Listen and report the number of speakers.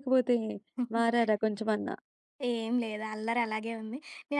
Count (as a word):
two